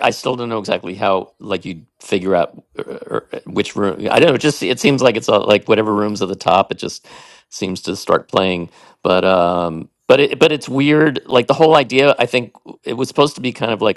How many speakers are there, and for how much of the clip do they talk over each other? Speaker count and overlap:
1, no overlap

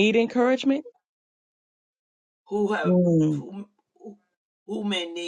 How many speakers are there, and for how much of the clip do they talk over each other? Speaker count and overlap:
2, about 5%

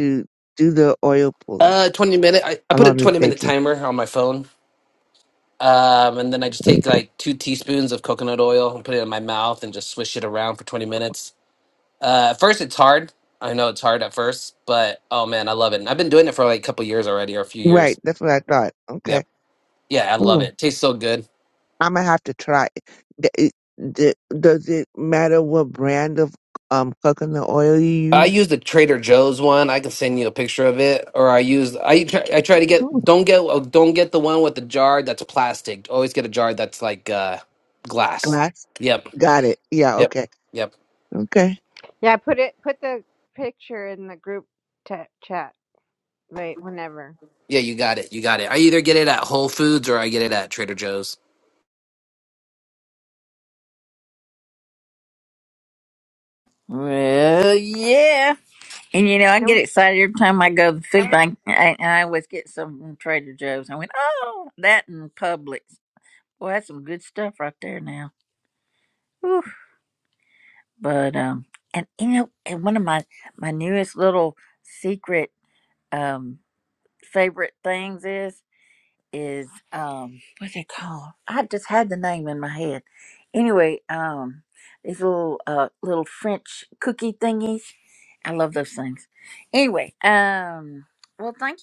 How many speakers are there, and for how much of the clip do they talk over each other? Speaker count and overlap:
4, about 3%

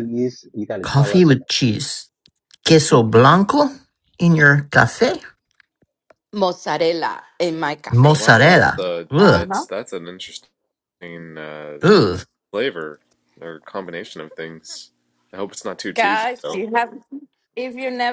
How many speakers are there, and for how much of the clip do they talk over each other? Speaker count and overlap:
4, about 15%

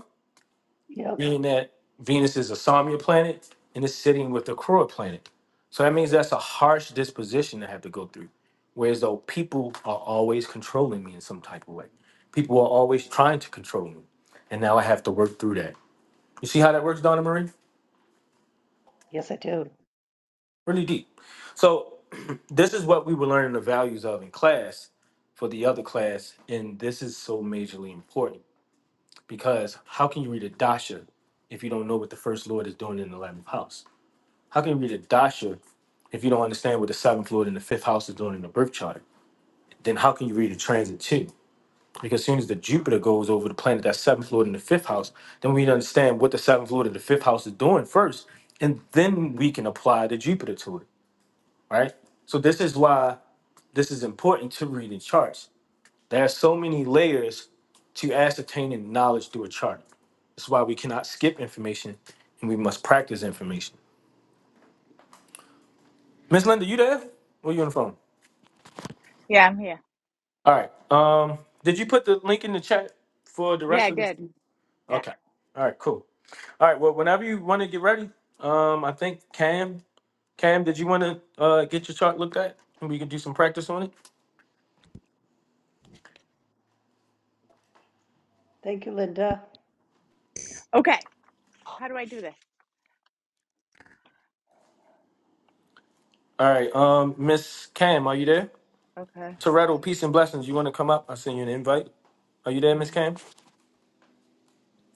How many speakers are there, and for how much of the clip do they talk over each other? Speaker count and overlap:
3, about 1%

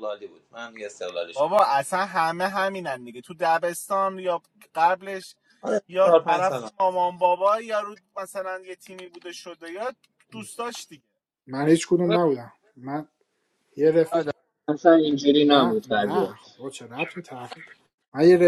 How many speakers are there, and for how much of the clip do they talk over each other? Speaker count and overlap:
4, about 9%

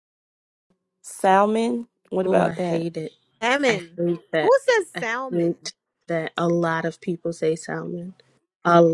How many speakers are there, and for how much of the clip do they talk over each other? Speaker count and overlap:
3, about 16%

